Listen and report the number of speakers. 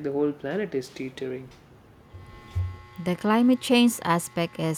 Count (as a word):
two